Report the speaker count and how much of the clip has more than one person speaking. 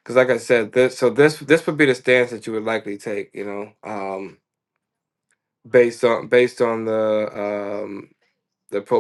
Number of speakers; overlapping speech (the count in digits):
1, no overlap